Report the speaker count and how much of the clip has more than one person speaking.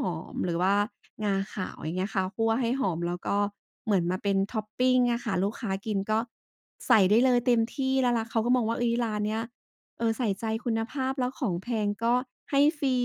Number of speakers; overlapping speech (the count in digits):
1, no overlap